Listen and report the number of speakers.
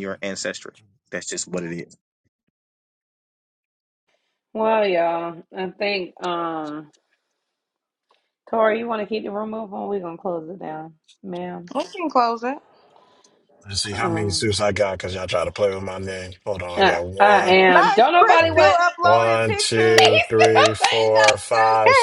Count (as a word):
four